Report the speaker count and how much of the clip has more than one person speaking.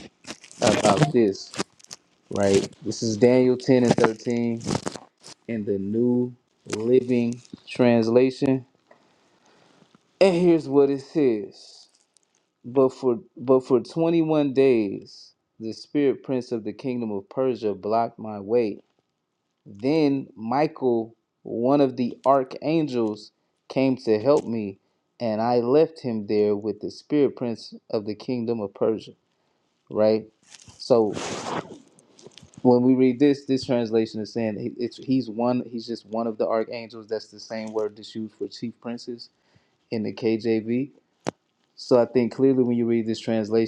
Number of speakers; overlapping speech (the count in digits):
1, no overlap